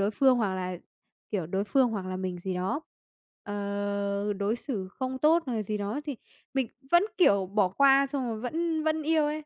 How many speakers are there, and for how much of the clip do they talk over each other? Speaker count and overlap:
1, no overlap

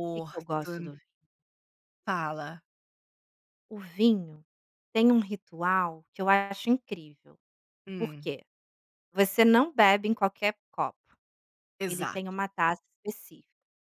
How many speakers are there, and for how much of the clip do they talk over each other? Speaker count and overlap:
2, about 6%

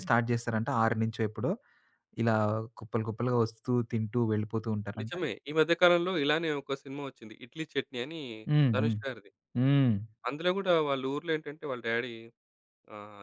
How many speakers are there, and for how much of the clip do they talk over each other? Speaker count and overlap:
2, about 3%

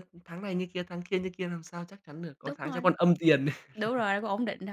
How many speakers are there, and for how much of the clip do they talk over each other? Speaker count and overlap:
2, about 8%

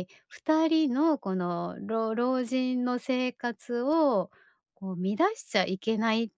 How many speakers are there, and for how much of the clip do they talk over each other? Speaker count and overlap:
1, no overlap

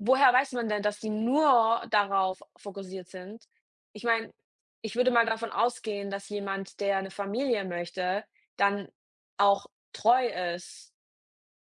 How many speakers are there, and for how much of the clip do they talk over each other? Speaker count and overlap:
1, no overlap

